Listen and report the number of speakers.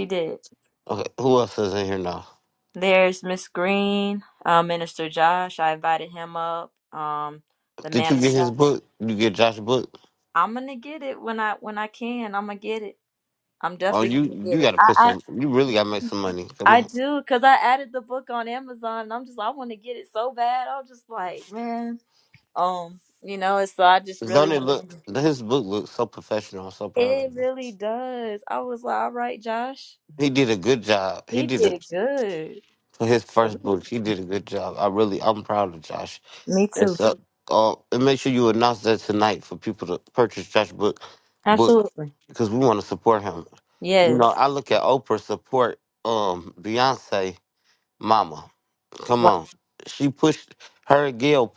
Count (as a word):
two